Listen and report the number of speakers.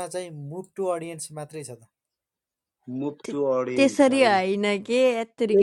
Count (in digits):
3